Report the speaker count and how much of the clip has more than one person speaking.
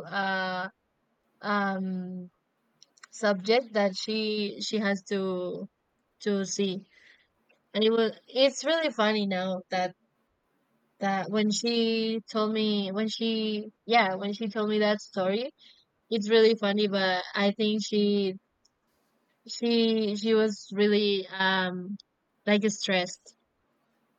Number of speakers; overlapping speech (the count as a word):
one, no overlap